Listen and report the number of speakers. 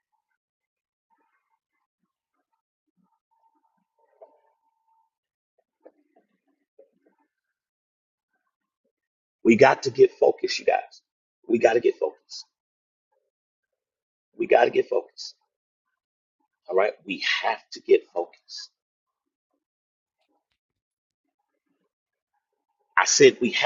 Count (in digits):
1